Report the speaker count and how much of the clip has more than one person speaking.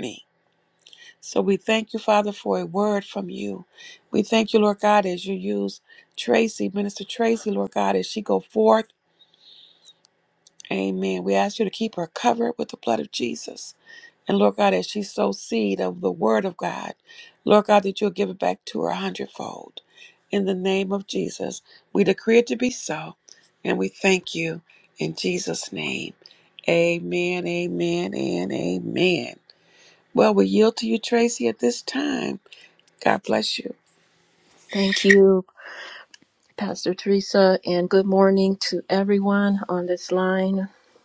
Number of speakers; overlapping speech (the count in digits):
2, no overlap